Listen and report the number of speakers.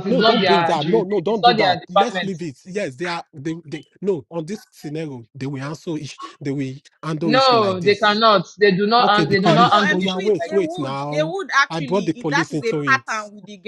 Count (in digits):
3